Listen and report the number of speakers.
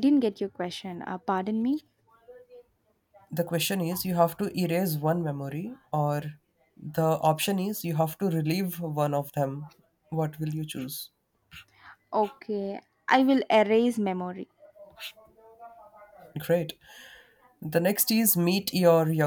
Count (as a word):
two